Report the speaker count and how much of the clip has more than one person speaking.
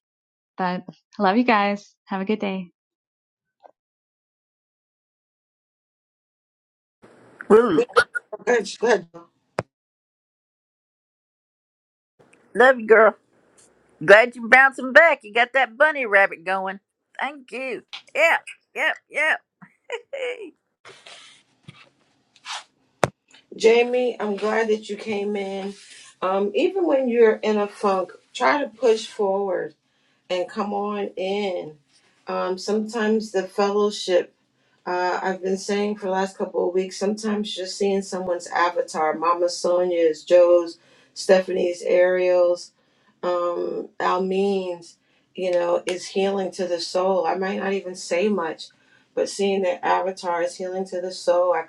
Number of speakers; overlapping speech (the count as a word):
three, under 1%